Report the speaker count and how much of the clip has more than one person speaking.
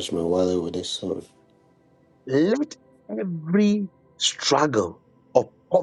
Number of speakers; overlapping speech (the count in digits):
2, no overlap